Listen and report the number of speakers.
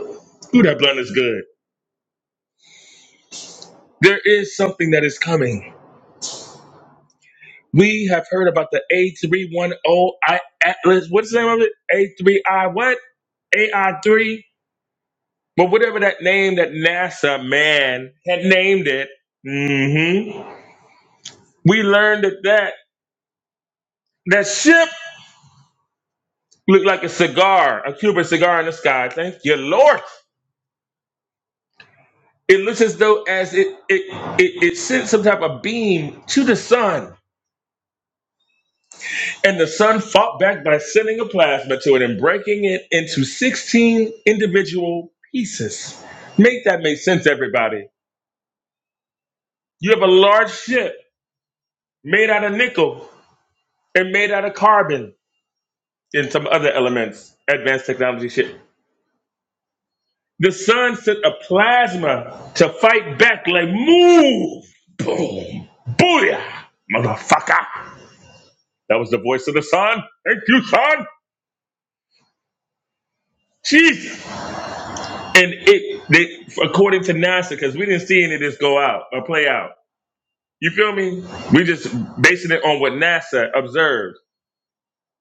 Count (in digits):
1